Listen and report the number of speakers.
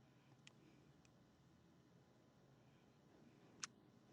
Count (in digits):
0